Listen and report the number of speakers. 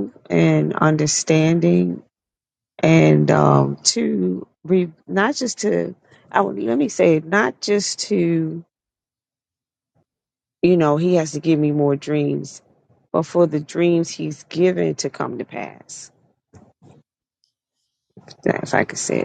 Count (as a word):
one